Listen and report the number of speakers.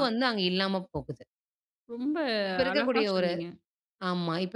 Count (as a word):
two